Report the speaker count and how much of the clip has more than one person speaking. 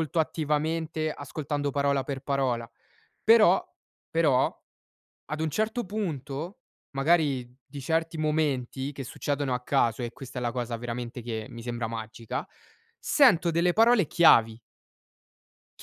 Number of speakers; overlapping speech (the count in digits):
1, no overlap